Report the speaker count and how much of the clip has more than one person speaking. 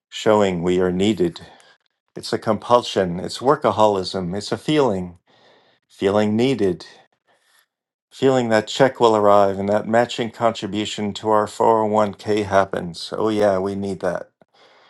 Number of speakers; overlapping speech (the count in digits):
1, no overlap